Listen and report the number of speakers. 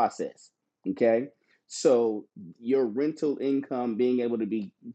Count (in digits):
1